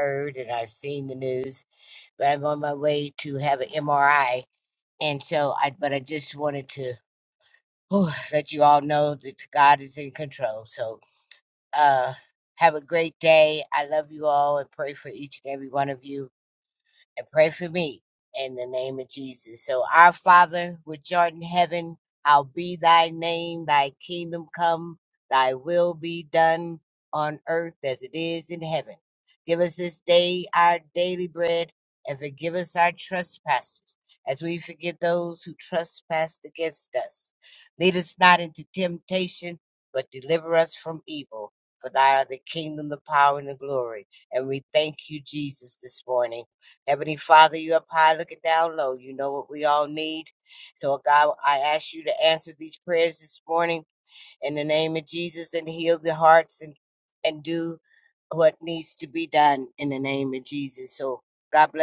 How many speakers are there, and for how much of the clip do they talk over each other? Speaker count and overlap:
1, no overlap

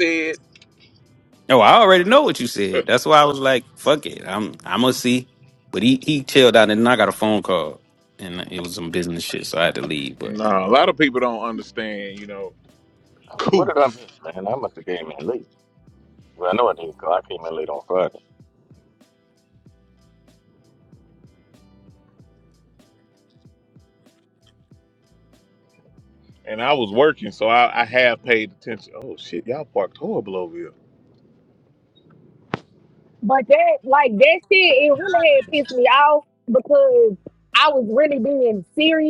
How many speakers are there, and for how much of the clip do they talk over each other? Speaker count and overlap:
4, about 1%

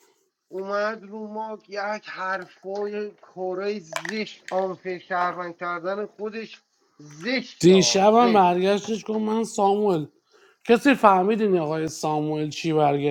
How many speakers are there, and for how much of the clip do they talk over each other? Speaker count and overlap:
2, about 7%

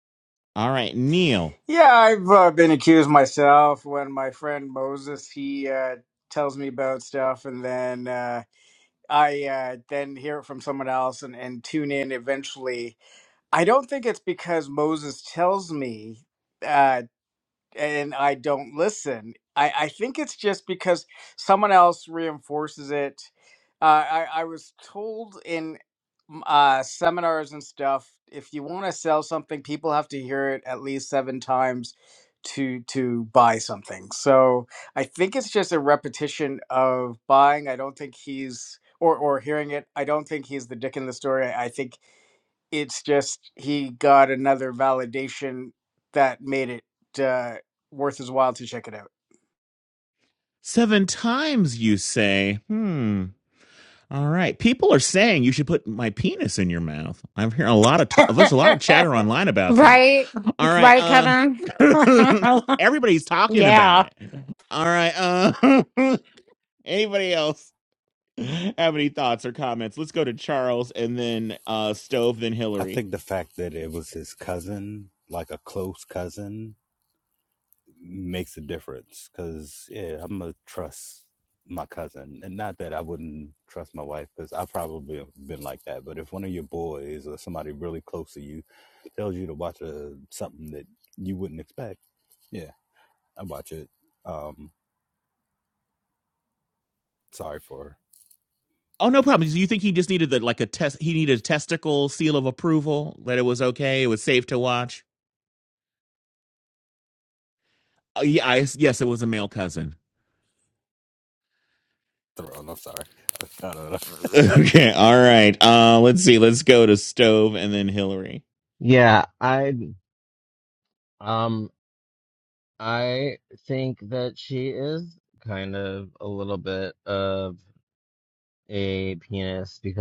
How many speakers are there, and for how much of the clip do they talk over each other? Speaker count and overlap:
5, about 1%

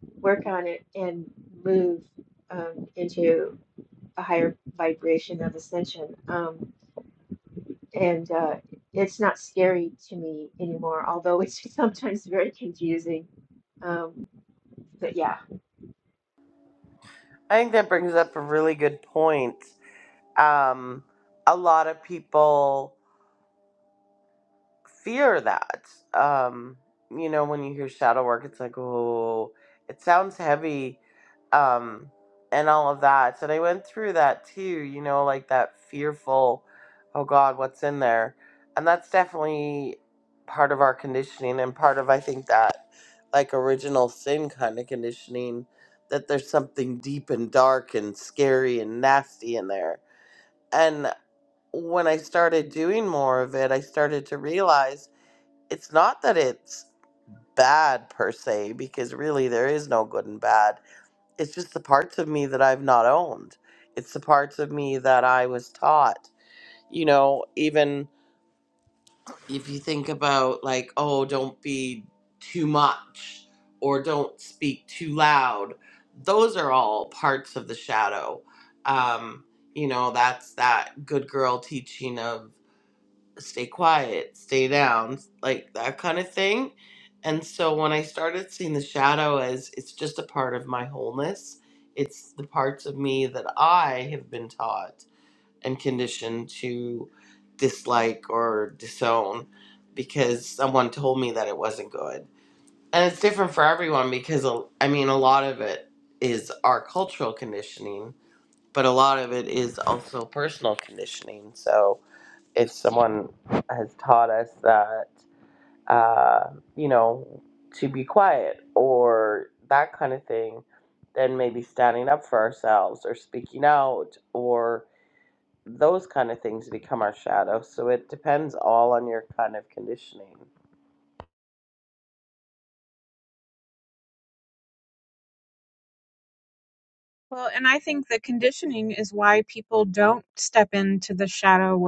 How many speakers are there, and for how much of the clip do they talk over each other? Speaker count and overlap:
3, no overlap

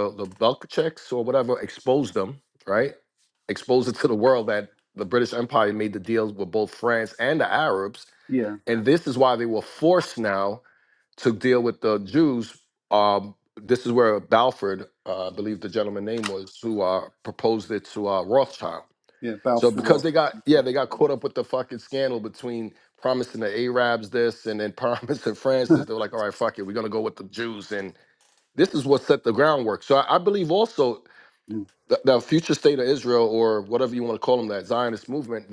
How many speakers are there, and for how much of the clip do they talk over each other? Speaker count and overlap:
2, about 1%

